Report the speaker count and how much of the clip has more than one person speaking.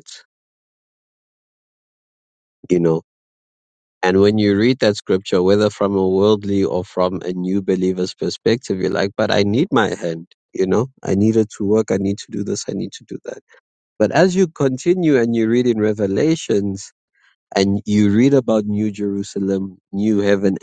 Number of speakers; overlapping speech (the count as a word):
one, no overlap